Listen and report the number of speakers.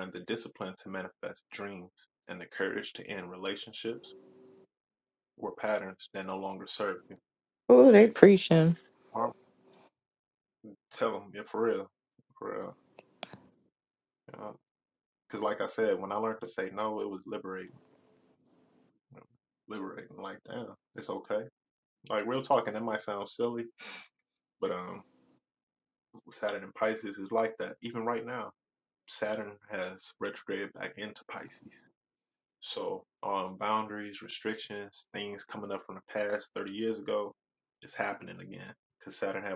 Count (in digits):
2